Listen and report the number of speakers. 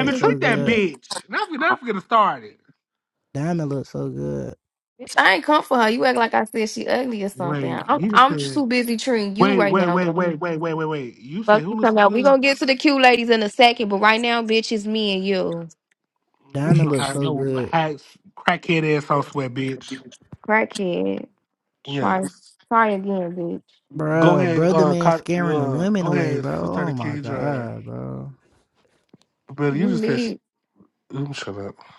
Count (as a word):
three